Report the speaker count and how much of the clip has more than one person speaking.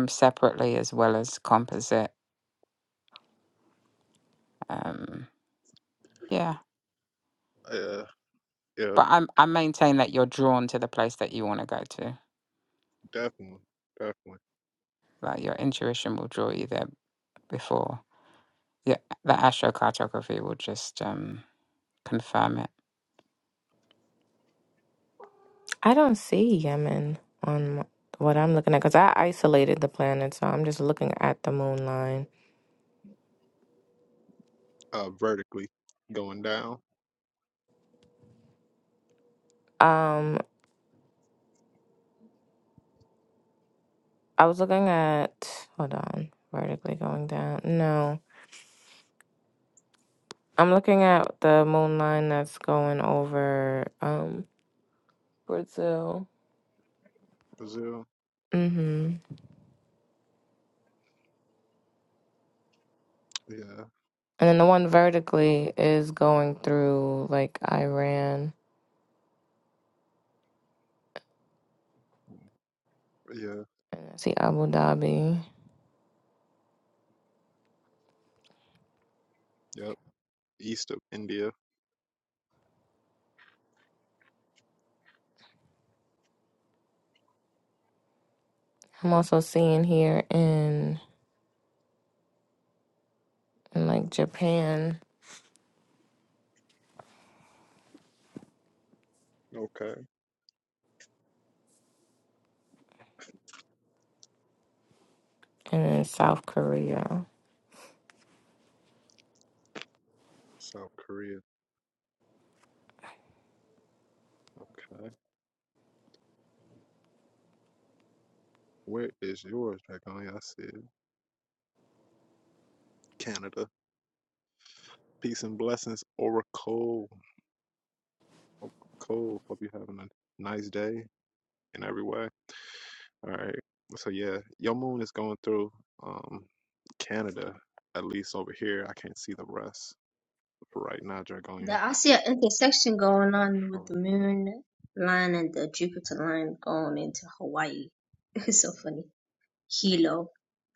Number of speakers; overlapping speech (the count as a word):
four, under 1%